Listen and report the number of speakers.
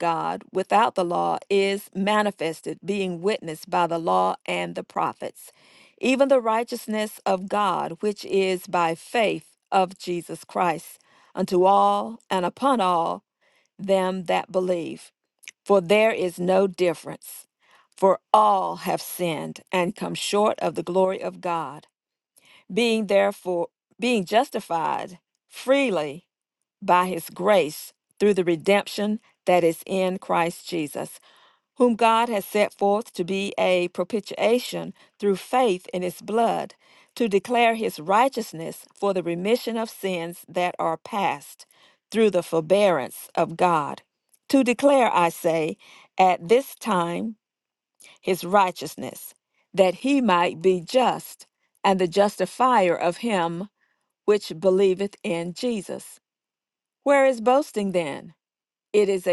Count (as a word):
one